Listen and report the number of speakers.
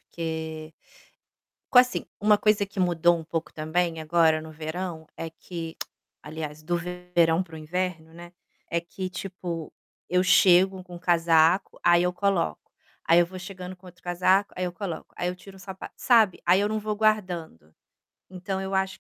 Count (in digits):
1